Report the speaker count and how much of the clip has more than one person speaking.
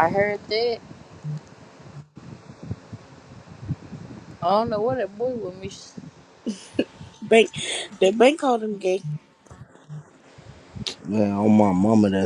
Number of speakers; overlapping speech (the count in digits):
3, no overlap